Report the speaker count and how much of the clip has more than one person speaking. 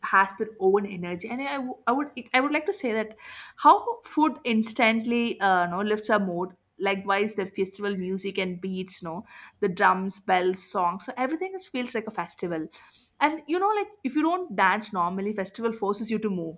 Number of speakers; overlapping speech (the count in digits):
1, no overlap